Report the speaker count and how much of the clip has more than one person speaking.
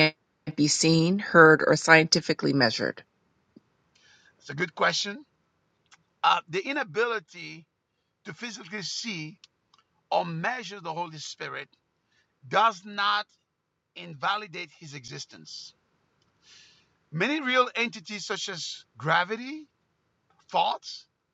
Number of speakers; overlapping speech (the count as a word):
two, no overlap